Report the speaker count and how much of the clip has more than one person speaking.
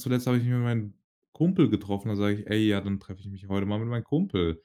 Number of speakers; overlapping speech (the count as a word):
one, no overlap